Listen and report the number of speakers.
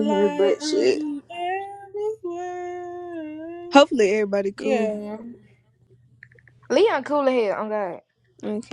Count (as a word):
three